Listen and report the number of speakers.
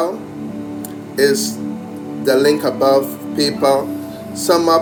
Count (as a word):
one